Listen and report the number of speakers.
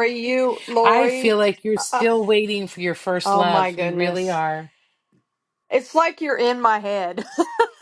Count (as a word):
two